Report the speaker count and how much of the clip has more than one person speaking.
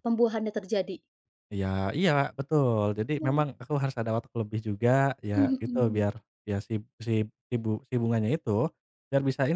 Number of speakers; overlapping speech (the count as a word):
two, about 10%